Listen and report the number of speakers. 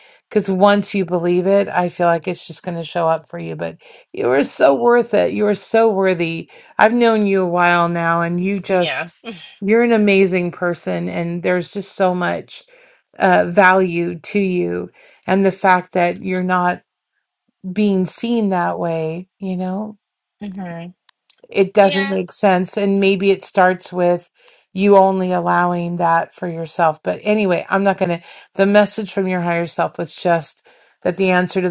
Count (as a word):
two